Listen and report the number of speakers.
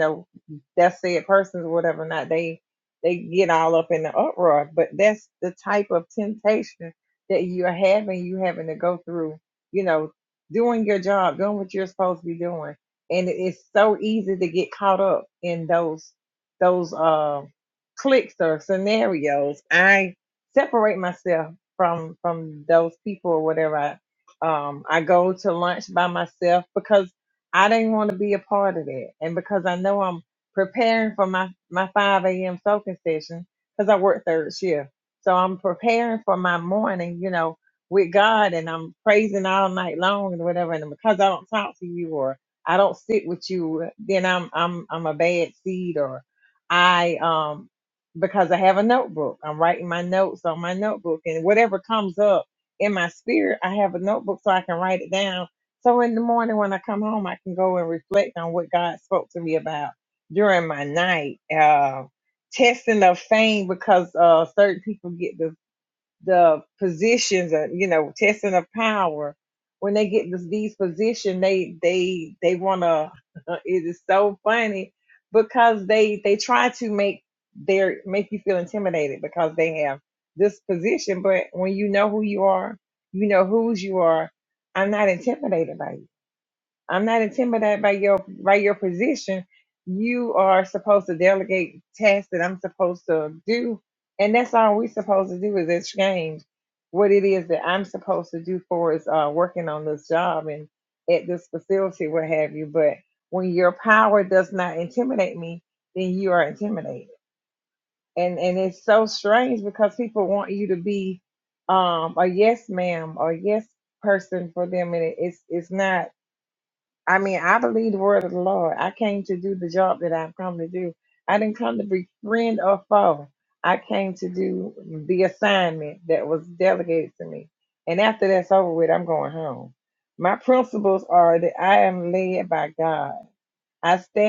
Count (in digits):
1